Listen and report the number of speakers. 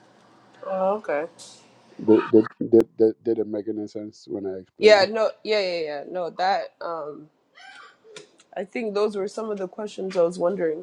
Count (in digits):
2